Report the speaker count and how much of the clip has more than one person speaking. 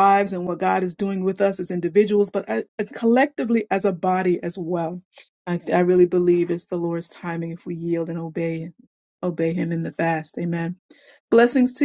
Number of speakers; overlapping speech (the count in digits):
1, no overlap